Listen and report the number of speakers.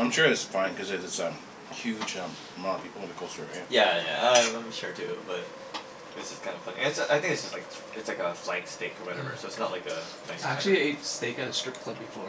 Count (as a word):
three